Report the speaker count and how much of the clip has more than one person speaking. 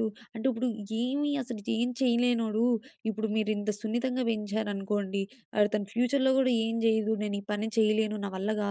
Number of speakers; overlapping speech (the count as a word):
one, no overlap